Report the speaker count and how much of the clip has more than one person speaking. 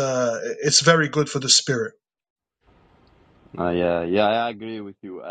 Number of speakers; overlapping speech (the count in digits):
2, no overlap